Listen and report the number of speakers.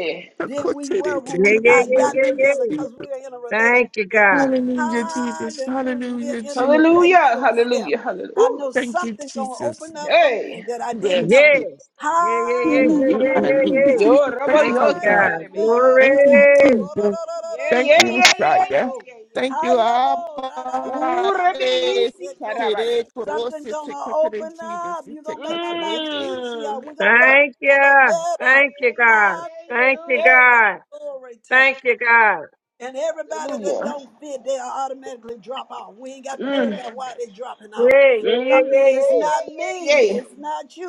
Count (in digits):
4